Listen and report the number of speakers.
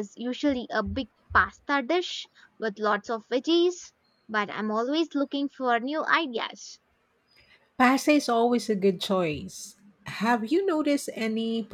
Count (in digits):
2